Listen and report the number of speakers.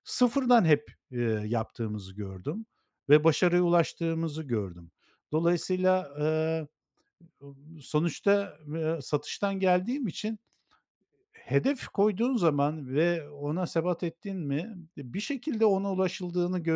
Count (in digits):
1